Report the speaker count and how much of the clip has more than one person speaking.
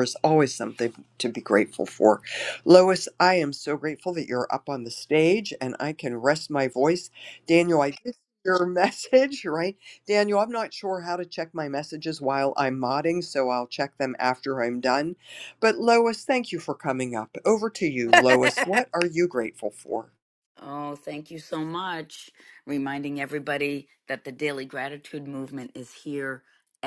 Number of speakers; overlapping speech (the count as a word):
two, no overlap